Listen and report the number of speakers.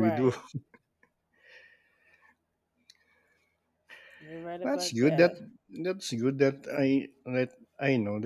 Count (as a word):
two